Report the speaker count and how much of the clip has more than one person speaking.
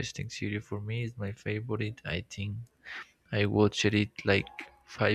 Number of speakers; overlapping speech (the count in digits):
1, no overlap